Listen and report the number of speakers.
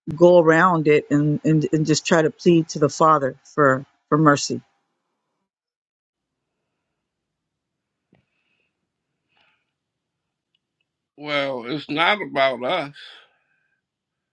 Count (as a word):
two